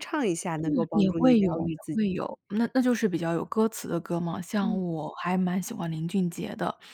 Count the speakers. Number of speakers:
two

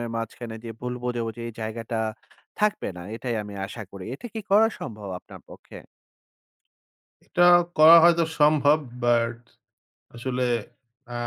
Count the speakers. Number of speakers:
two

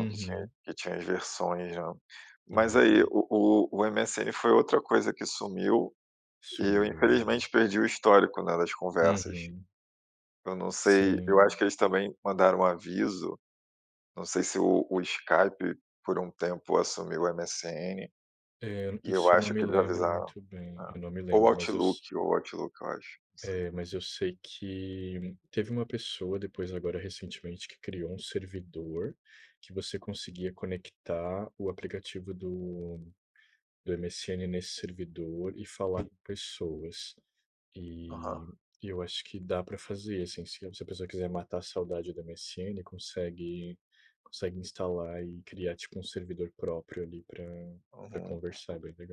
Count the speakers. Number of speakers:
two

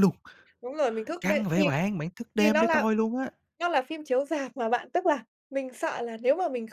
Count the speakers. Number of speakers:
two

